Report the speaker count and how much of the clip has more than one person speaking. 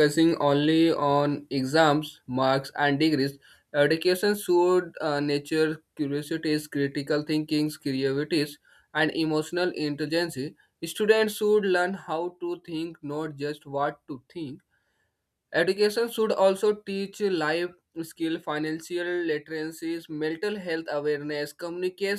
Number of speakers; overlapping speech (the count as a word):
one, no overlap